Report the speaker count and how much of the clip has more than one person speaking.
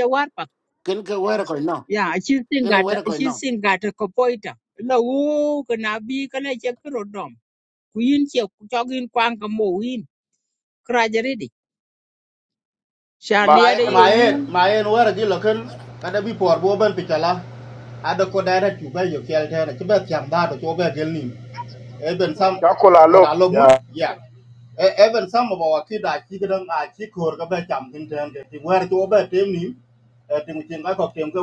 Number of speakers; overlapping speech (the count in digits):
4, about 8%